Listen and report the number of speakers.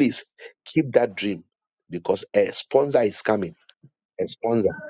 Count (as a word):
one